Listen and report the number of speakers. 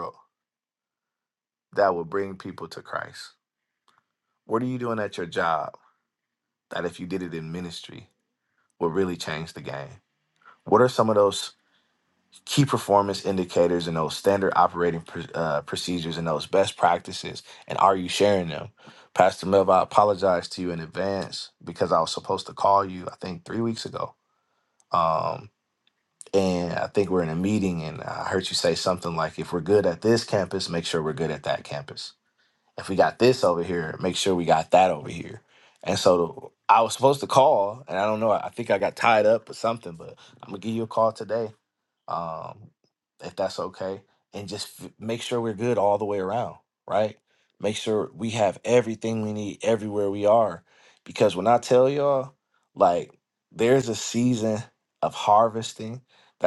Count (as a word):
one